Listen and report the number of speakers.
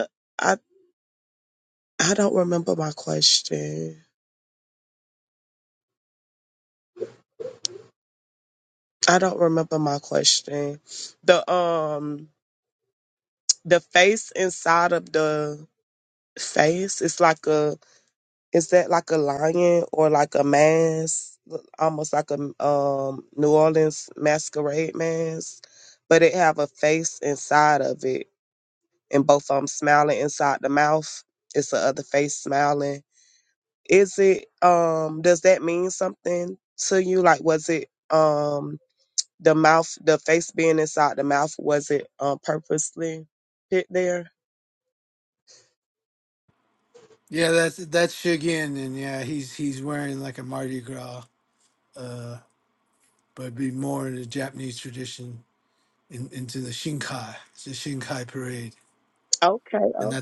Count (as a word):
two